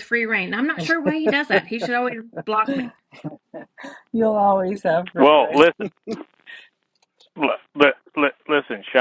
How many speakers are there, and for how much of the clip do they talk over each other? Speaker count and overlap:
three, about 5%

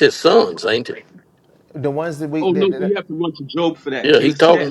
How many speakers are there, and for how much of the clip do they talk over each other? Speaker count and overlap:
three, about 24%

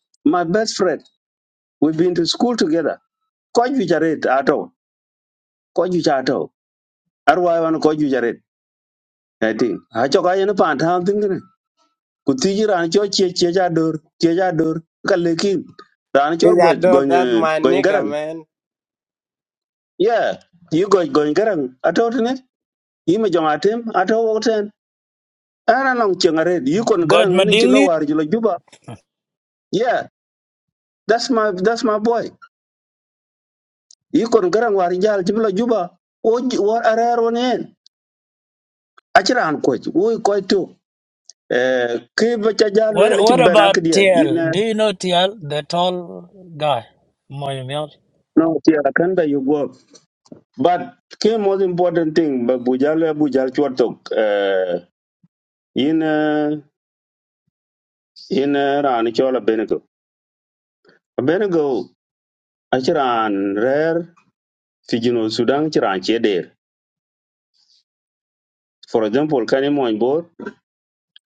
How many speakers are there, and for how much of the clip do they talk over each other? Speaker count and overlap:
three, about 5%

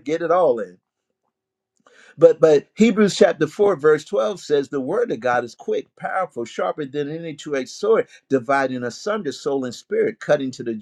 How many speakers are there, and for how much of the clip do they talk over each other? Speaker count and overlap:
one, no overlap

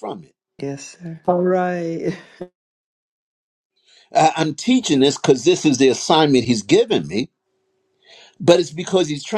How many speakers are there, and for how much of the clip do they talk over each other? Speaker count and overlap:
two, no overlap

